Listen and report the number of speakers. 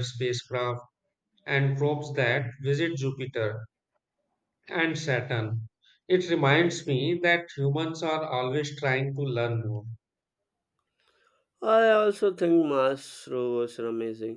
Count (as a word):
two